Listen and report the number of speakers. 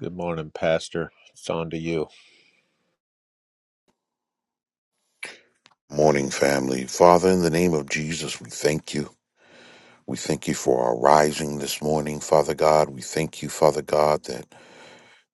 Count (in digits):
2